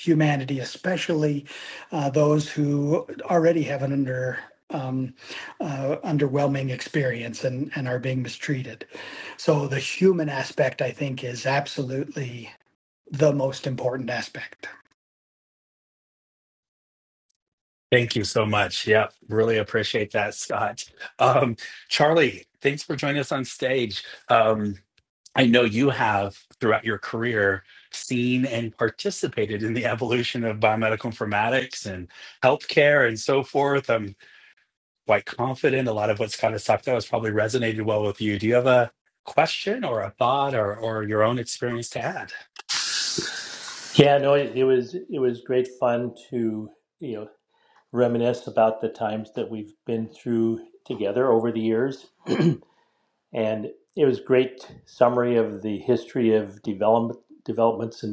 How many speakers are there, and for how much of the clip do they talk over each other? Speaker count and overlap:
3, no overlap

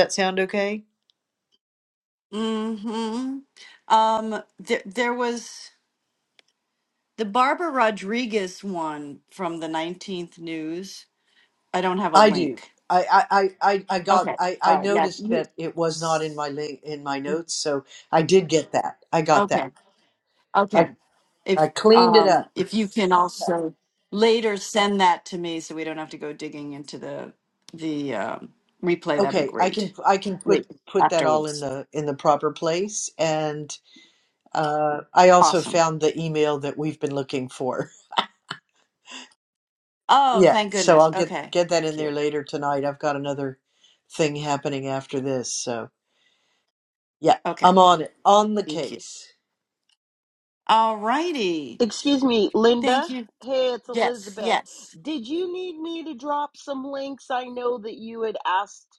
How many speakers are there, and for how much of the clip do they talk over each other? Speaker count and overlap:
3, about 14%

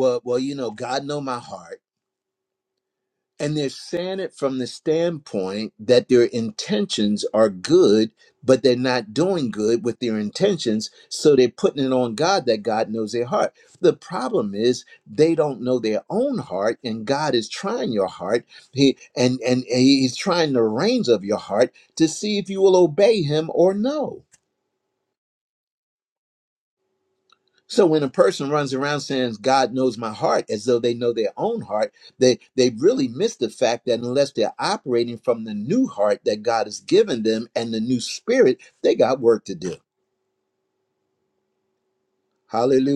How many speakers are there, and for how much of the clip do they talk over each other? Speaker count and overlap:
1, no overlap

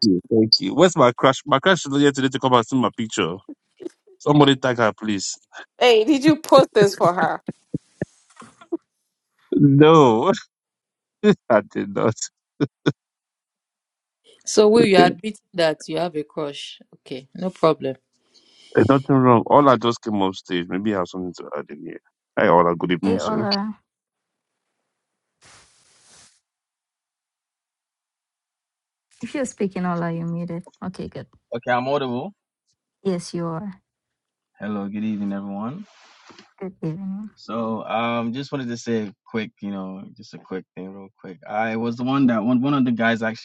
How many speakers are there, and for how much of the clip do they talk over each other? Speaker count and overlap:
5, about 1%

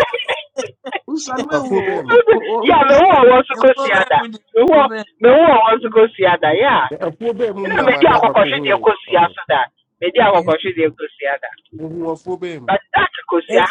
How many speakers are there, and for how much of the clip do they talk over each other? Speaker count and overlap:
4, about 29%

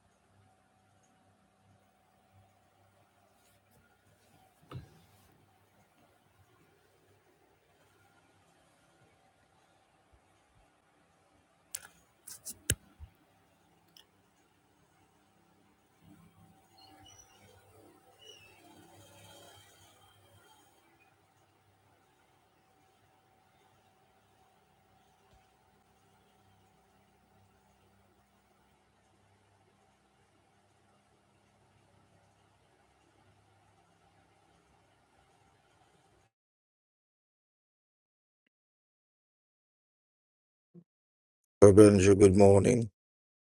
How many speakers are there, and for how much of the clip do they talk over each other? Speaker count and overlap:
1, no overlap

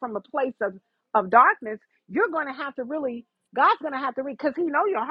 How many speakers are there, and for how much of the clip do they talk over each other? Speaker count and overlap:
1, no overlap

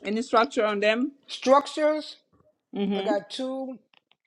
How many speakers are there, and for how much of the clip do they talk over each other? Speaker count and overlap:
2, about 5%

